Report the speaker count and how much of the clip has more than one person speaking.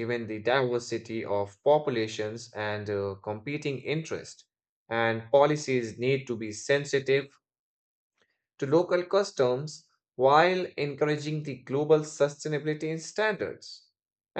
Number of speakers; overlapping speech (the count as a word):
one, no overlap